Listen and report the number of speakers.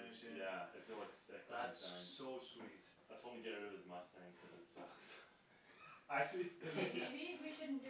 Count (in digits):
3